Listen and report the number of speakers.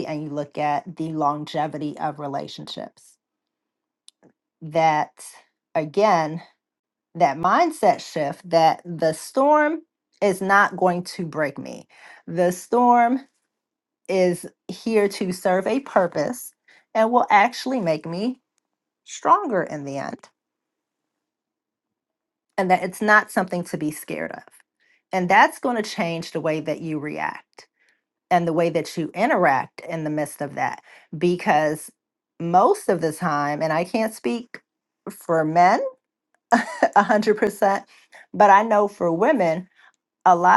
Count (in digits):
1